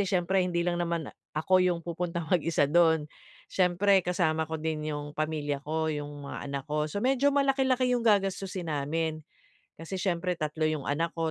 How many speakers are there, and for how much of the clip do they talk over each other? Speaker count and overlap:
1, no overlap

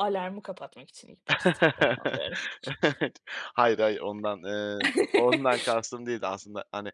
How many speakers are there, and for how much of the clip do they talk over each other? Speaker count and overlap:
2, no overlap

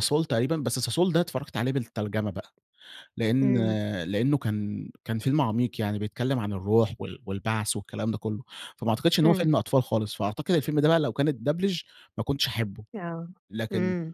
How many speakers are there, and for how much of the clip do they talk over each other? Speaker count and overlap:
2, about 5%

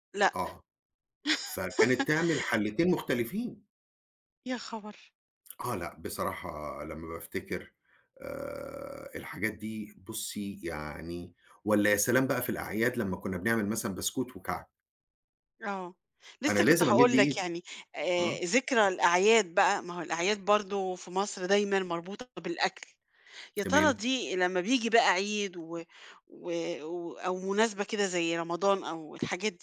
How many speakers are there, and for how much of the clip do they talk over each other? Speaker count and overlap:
2, about 6%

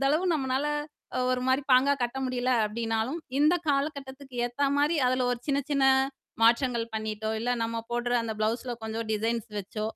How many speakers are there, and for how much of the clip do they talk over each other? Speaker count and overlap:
1, no overlap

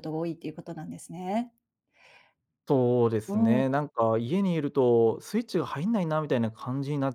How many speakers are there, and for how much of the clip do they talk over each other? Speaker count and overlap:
2, about 5%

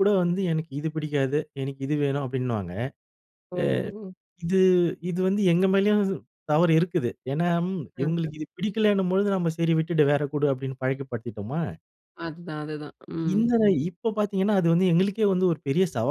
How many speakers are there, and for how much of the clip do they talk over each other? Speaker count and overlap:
2, about 4%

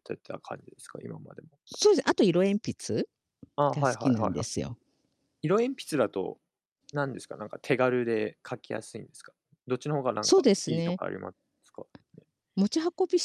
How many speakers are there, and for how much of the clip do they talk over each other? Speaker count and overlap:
2, about 11%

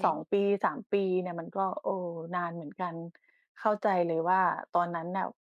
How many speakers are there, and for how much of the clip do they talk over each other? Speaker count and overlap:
1, no overlap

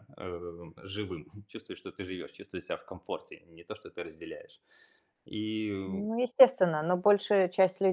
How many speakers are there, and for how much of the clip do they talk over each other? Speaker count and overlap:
2, about 2%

